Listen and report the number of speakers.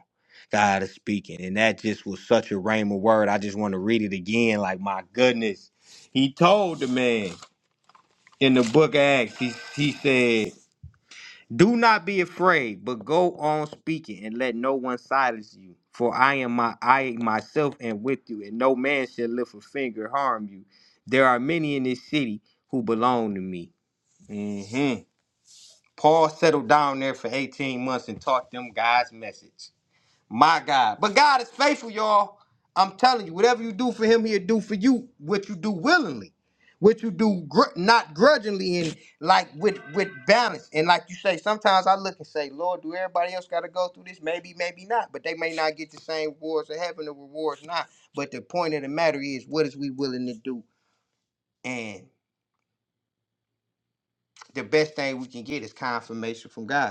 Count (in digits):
1